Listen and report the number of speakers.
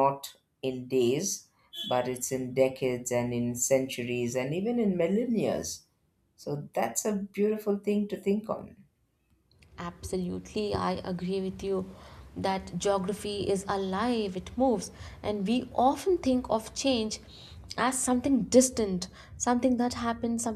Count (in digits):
2